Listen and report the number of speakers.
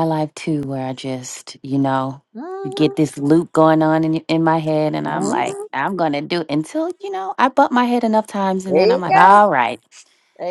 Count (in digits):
2